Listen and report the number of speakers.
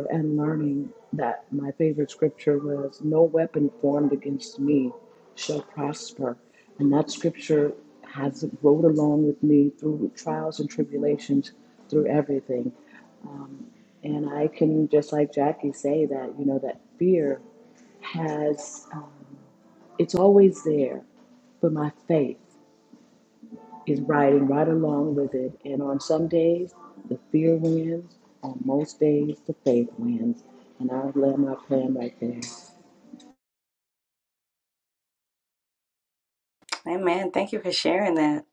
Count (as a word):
two